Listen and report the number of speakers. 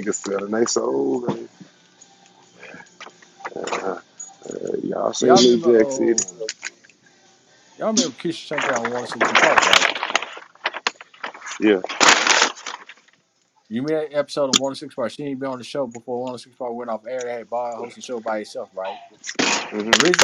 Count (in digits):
2